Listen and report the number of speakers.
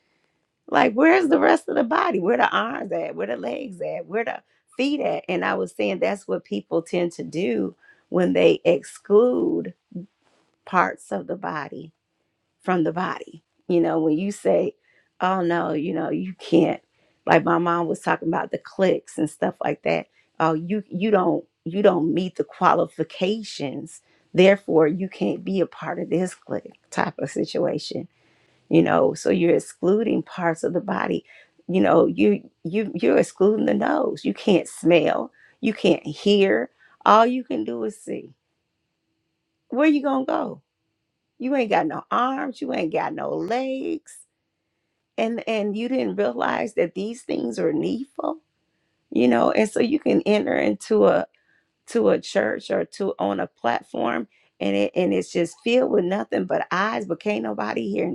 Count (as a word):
one